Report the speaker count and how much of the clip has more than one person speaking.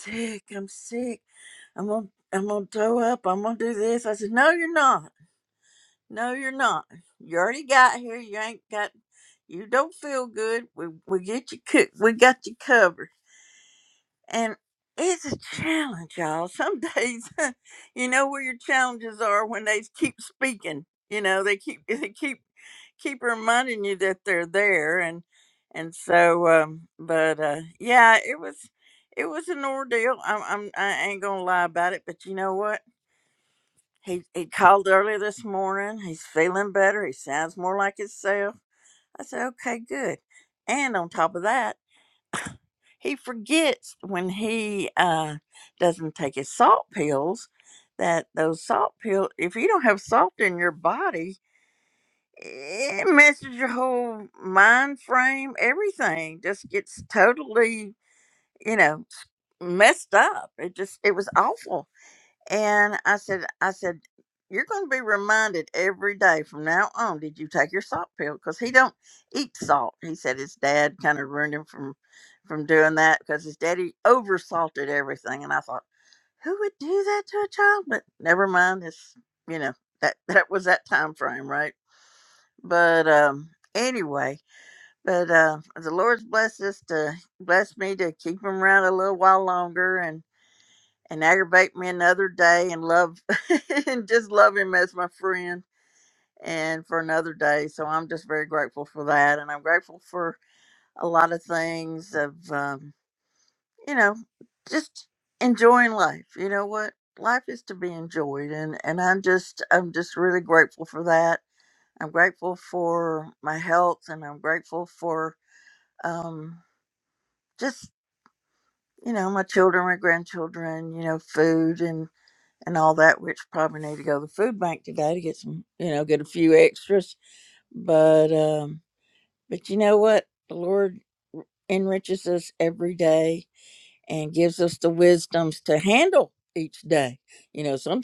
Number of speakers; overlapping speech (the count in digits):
1, no overlap